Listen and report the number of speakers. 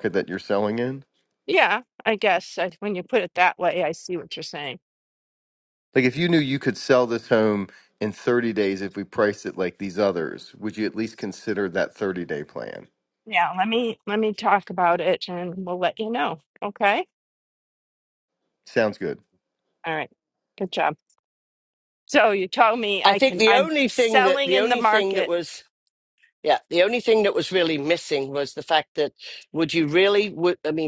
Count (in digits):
3